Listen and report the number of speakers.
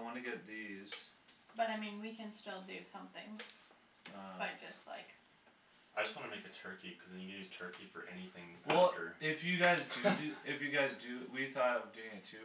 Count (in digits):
3